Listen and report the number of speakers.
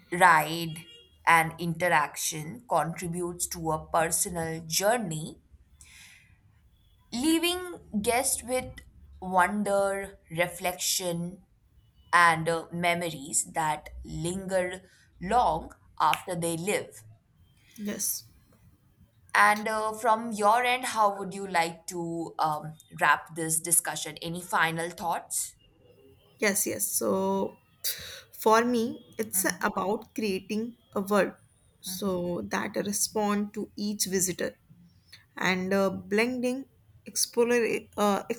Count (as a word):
two